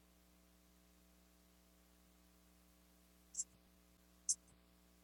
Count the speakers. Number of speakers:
0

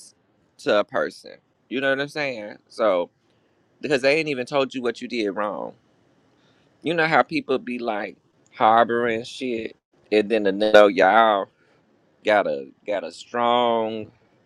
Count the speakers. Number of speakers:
1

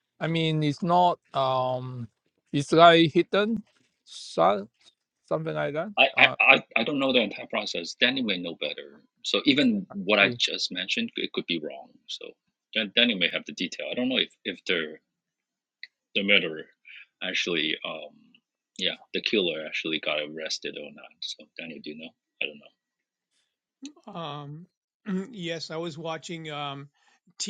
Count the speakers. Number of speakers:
3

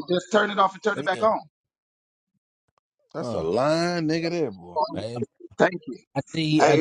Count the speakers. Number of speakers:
3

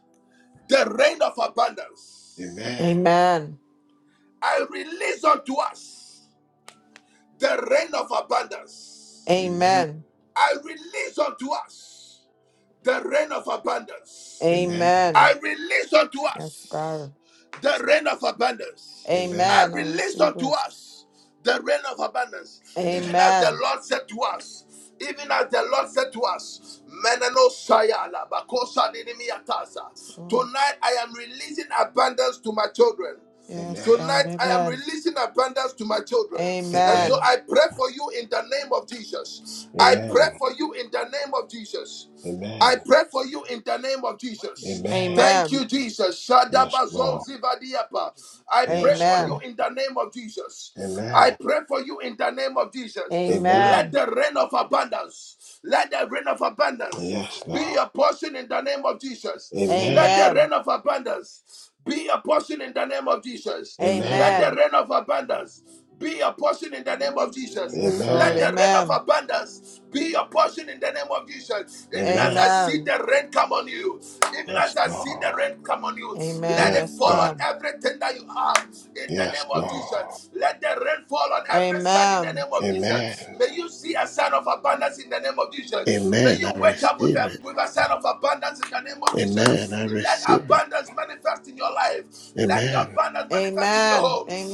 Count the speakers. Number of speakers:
3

